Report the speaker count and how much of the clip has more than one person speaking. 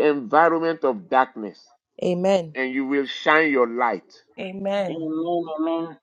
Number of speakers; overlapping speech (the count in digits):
3, about 2%